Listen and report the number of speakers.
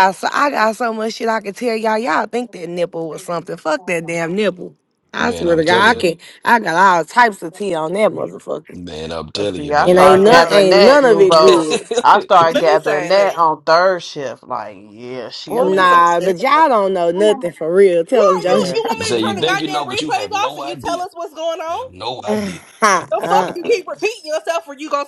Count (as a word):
four